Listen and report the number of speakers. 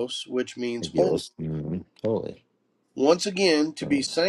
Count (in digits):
2